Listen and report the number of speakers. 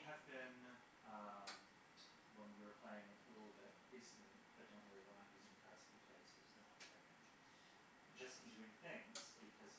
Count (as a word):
one